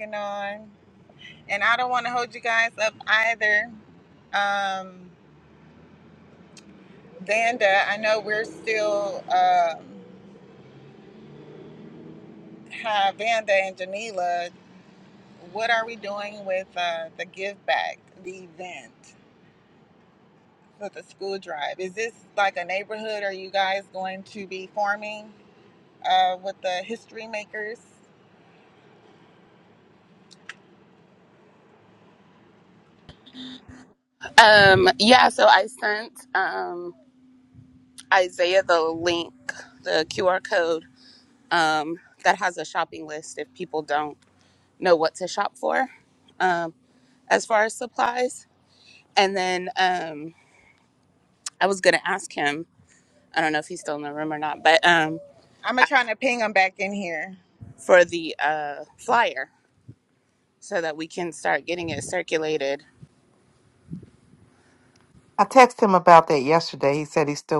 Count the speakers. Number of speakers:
3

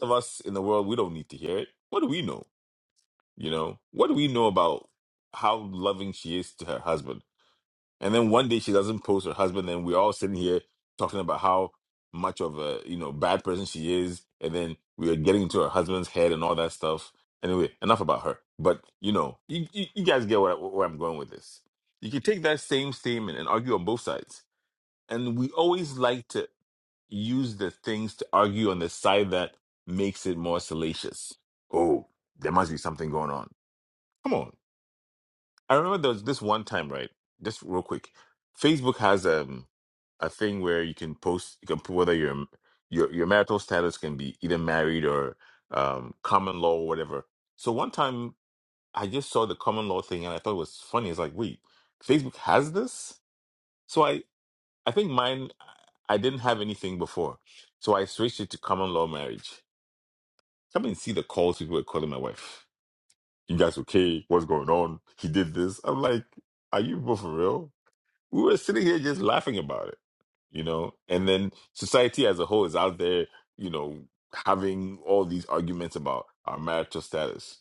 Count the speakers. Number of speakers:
1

